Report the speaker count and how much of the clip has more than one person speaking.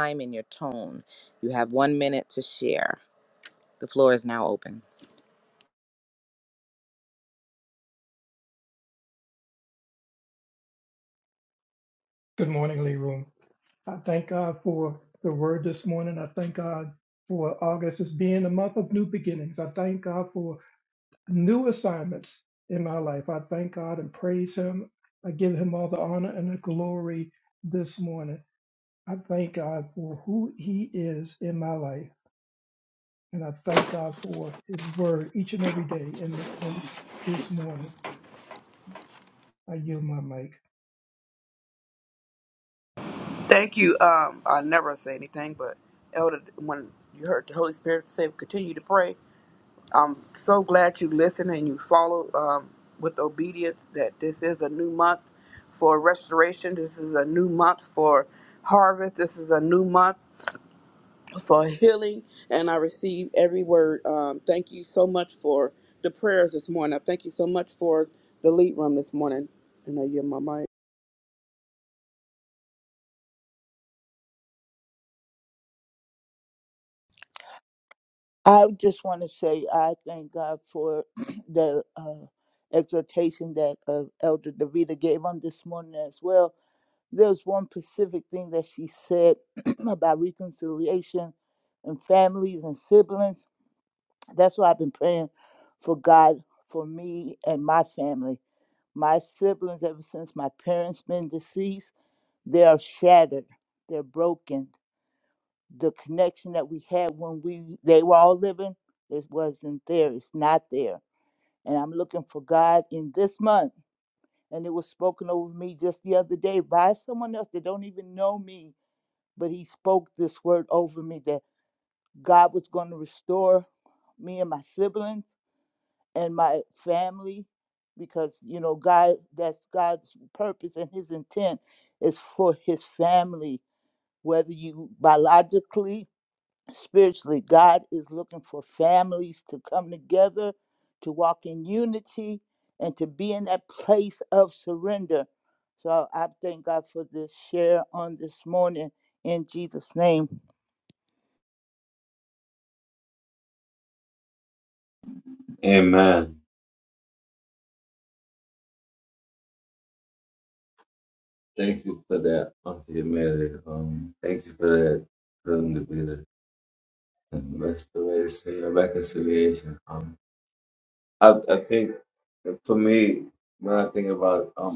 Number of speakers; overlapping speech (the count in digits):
5, no overlap